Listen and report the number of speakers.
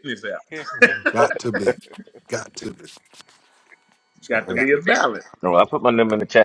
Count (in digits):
3